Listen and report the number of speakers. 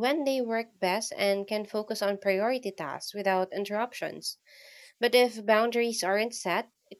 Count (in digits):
1